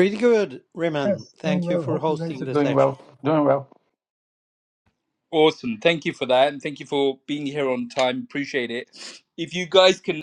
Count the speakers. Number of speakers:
3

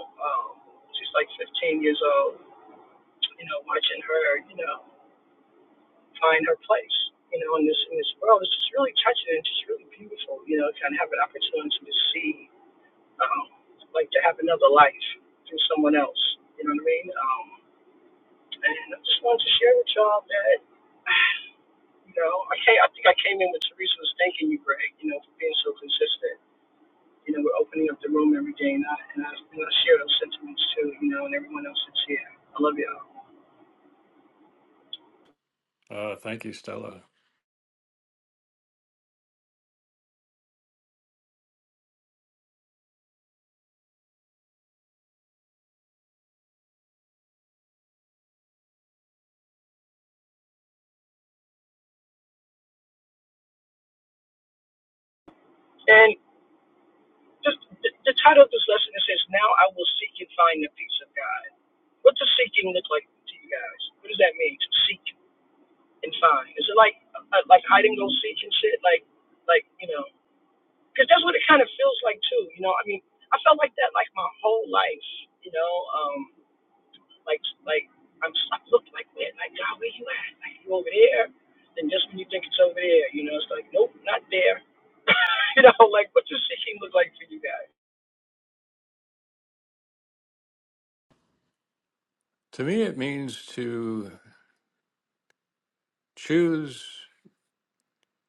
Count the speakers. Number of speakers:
2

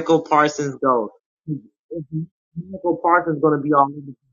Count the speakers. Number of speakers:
1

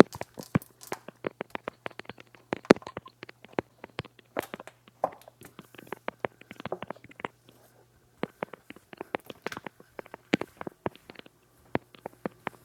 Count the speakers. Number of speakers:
0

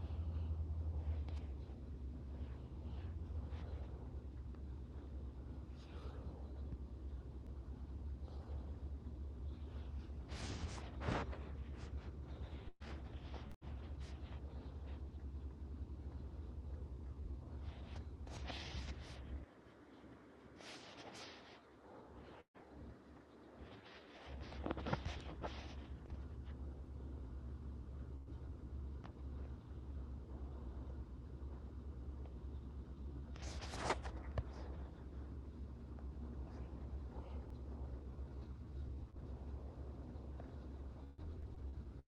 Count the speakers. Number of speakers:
0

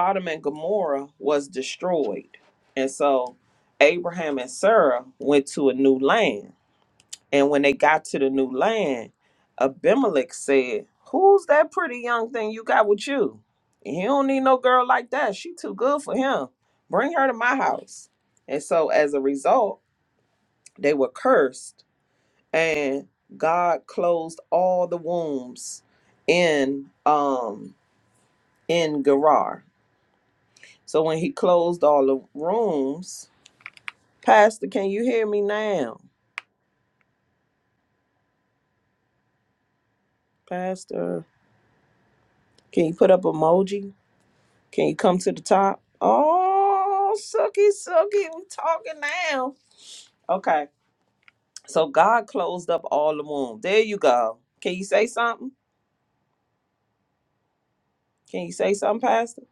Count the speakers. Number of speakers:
1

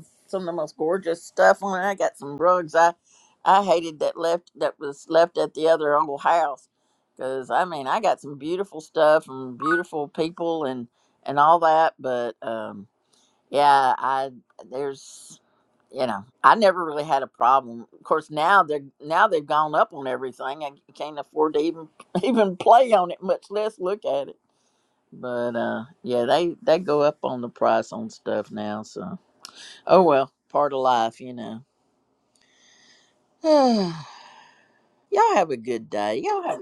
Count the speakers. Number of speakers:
1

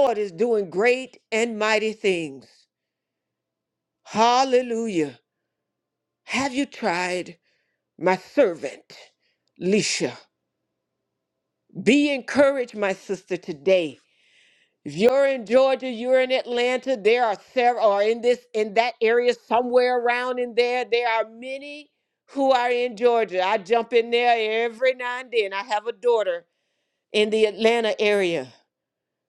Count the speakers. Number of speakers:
1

